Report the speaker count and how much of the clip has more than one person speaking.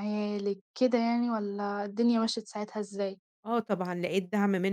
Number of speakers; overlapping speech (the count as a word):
two, no overlap